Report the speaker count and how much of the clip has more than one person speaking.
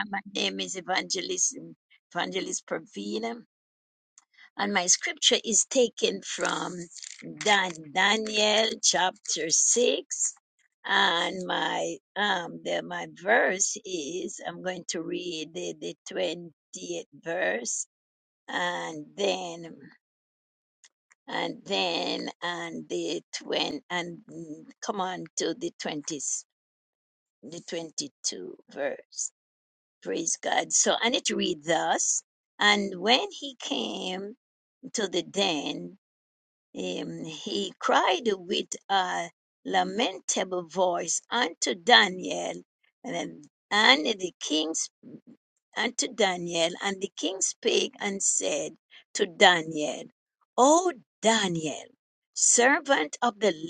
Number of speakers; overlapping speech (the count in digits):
1, no overlap